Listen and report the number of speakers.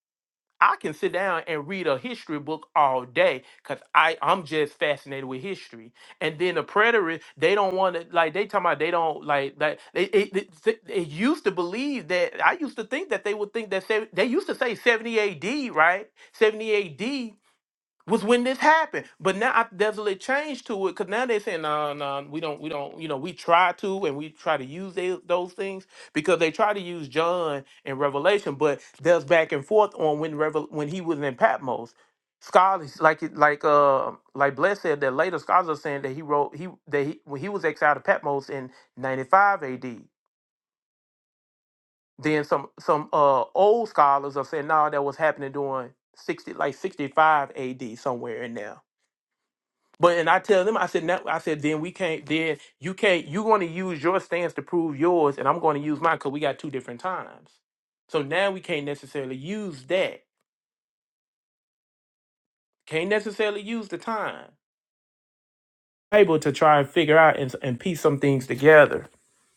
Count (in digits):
1